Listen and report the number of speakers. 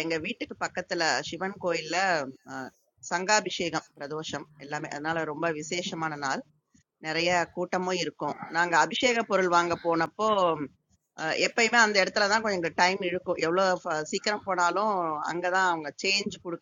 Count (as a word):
one